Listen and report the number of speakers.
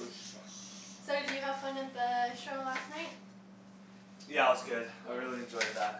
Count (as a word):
two